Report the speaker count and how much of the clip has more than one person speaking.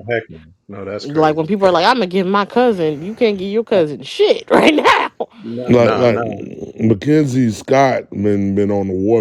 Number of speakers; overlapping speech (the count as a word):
three, about 13%